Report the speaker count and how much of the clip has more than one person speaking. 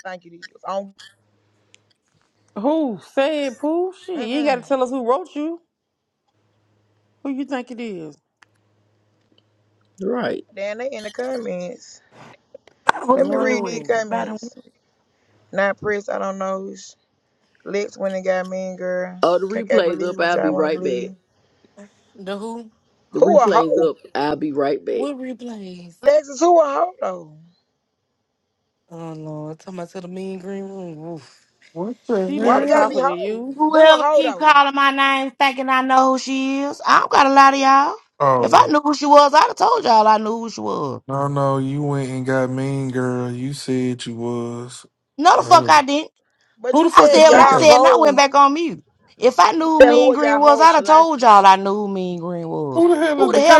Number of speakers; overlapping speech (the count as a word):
six, about 18%